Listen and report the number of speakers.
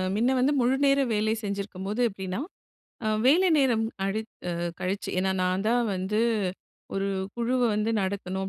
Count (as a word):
one